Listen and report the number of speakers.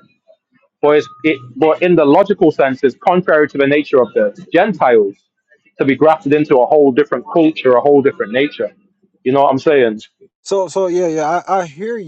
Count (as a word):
two